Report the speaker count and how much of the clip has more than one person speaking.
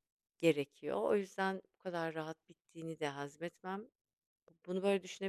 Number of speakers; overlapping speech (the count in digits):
1, no overlap